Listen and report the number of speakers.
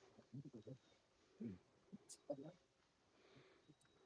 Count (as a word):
zero